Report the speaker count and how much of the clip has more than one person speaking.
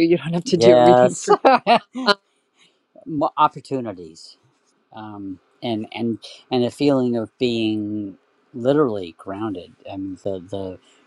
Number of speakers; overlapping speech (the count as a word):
two, about 7%